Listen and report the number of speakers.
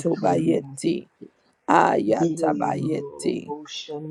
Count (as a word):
two